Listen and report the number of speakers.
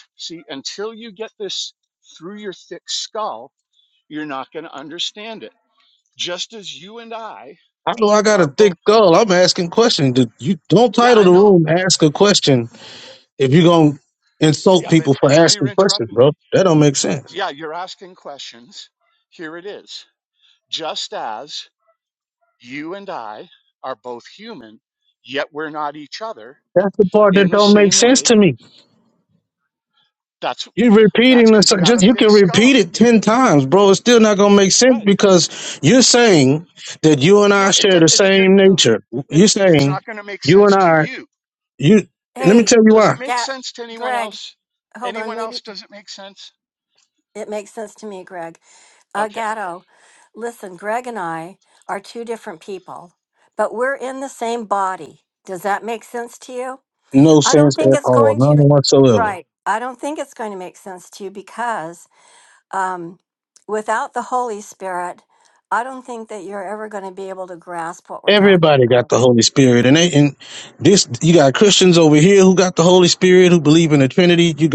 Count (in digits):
3